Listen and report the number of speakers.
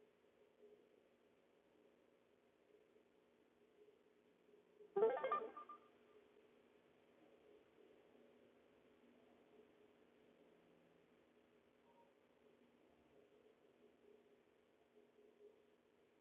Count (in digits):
0